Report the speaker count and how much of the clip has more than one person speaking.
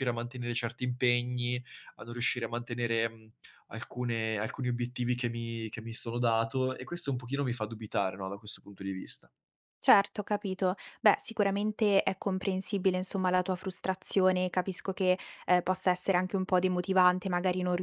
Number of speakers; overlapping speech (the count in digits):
2, no overlap